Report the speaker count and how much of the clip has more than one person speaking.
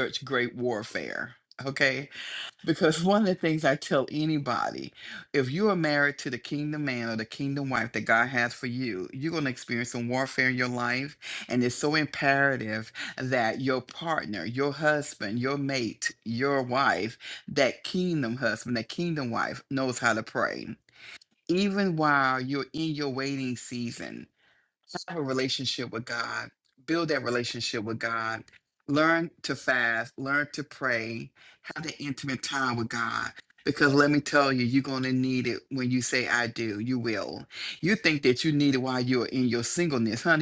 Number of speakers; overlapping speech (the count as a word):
one, no overlap